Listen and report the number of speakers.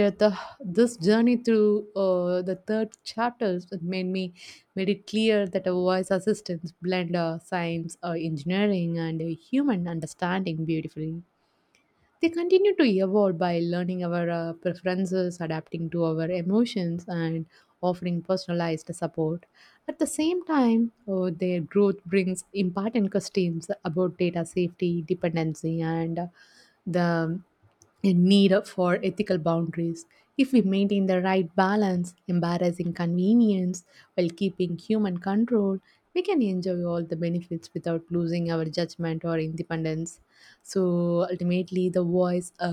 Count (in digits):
1